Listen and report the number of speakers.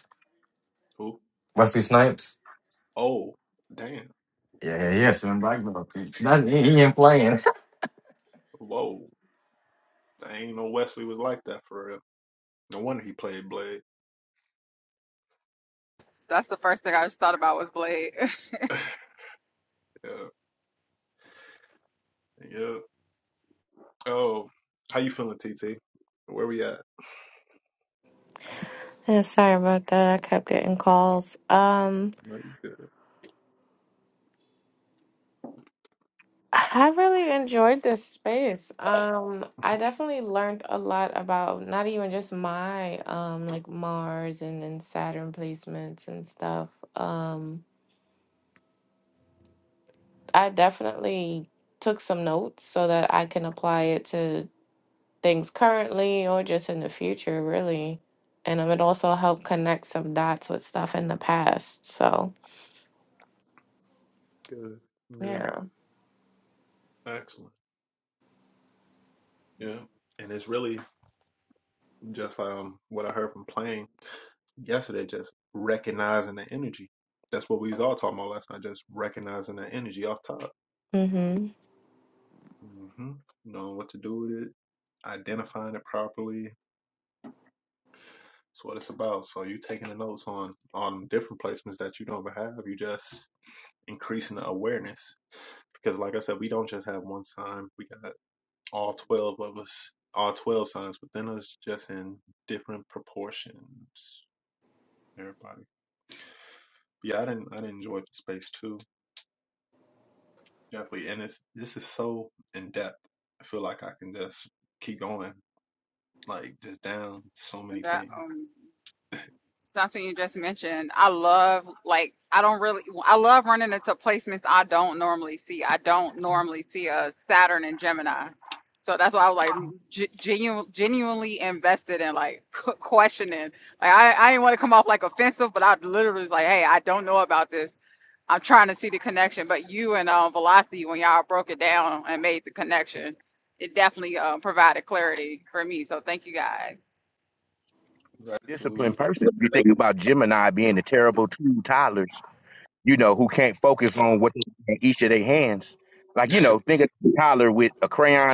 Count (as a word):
five